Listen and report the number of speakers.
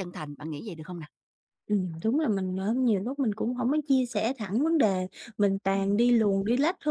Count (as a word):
two